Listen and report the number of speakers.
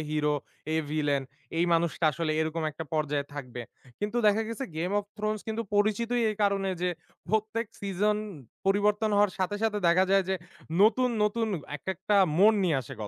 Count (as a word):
one